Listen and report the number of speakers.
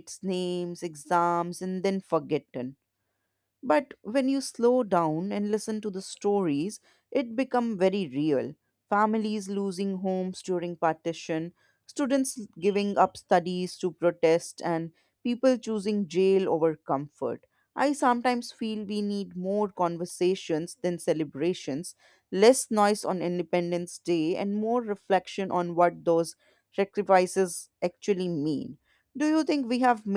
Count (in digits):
1